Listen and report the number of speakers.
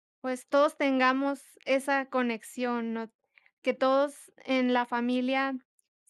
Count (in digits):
1